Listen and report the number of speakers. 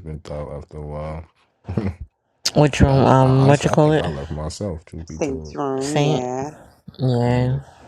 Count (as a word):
three